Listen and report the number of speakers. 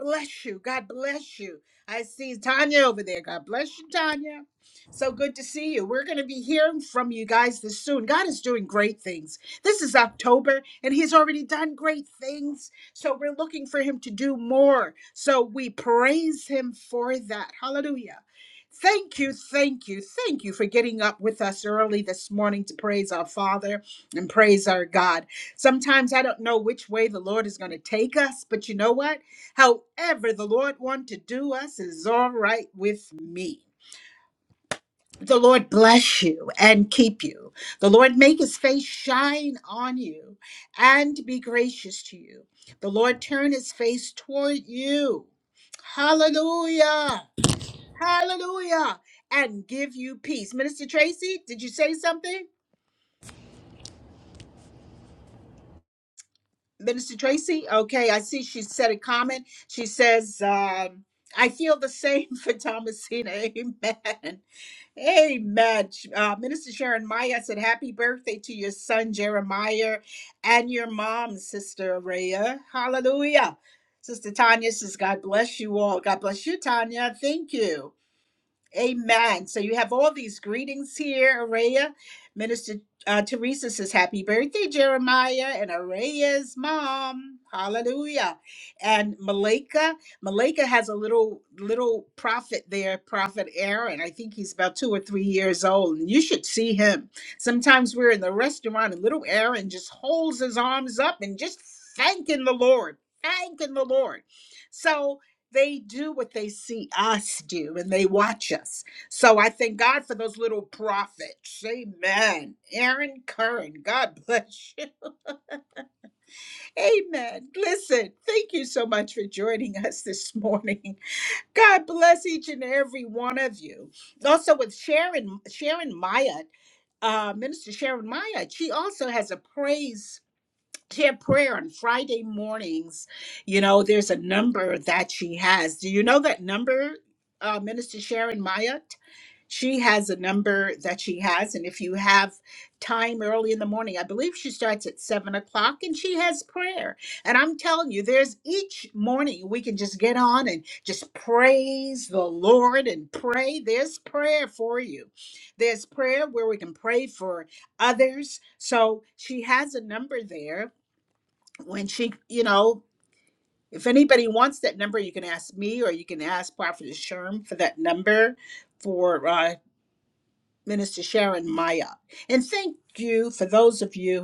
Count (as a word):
one